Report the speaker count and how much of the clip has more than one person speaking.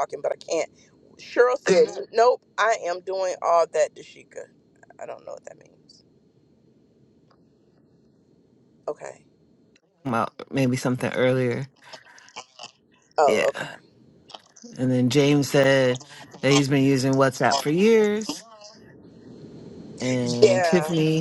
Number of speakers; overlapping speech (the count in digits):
2, about 4%